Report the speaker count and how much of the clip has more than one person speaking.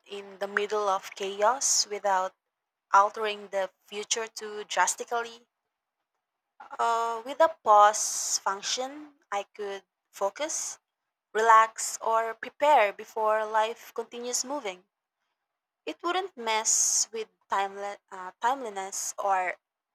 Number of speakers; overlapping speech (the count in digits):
1, no overlap